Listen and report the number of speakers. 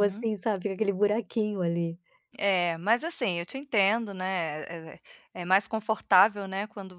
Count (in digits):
2